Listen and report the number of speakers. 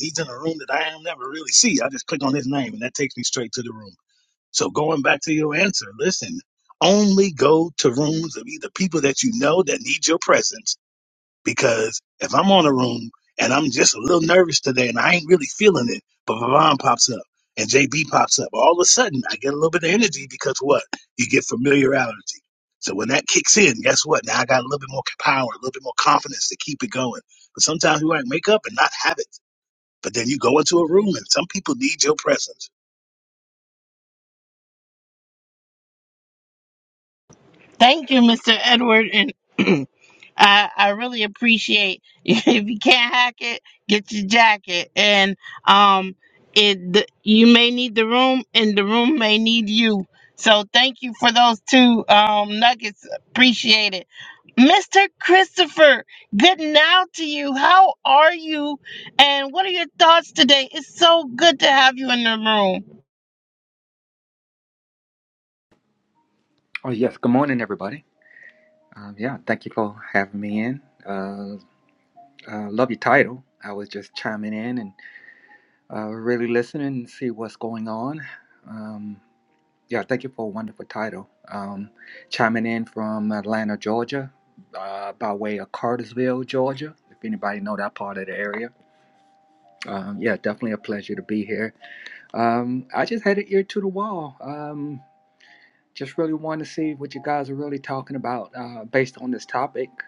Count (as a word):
three